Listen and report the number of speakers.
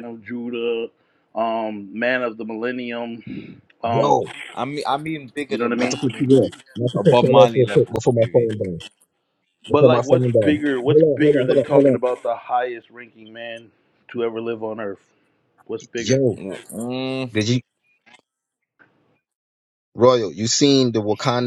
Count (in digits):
3